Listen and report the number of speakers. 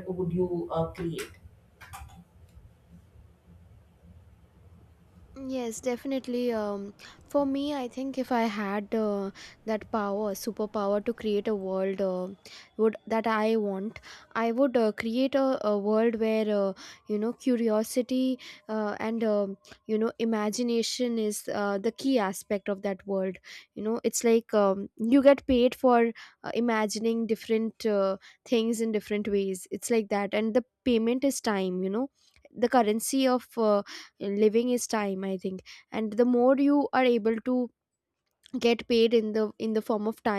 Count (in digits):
2